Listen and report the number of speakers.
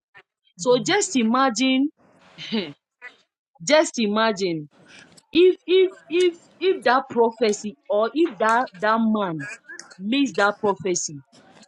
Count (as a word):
one